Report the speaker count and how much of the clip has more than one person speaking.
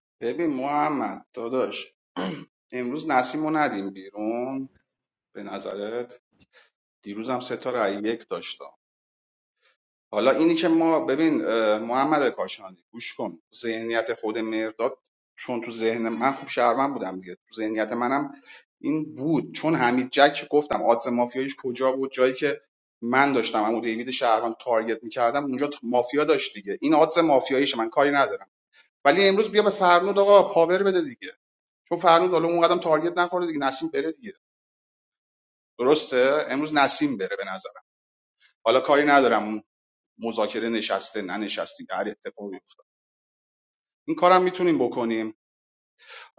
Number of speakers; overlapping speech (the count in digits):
1, no overlap